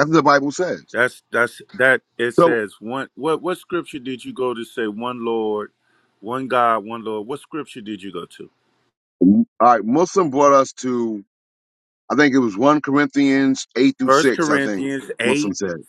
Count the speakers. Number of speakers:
2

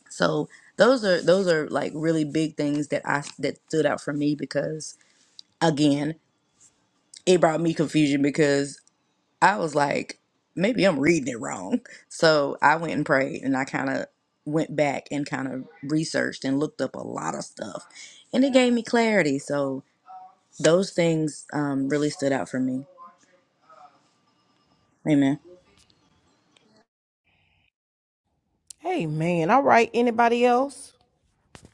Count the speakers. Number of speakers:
2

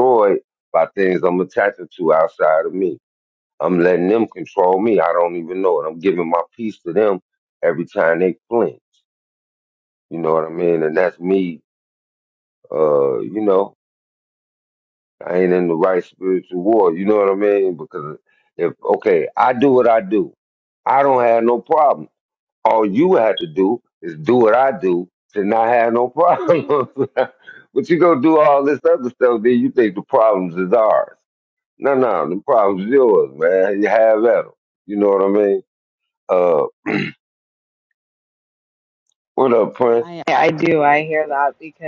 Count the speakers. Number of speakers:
2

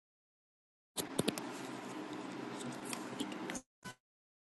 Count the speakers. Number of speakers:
0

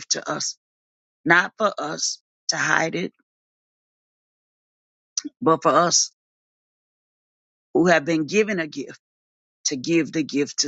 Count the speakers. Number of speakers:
1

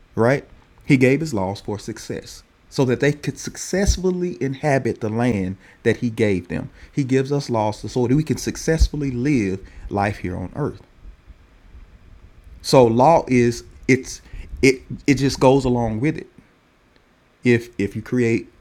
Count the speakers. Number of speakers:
1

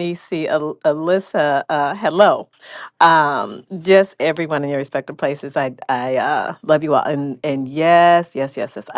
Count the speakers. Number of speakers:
1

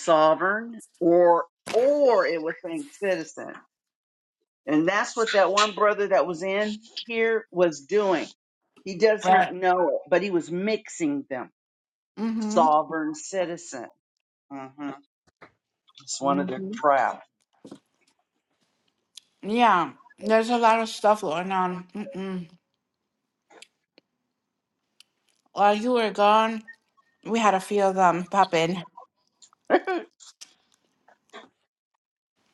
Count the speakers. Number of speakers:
2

